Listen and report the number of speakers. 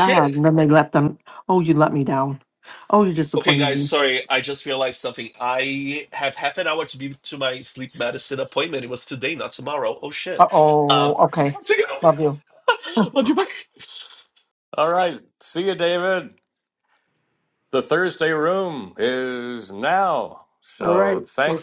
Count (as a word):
three